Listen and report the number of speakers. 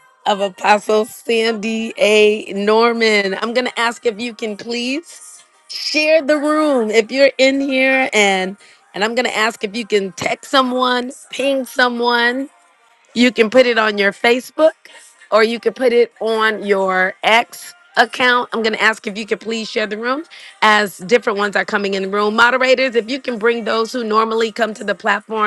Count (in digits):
1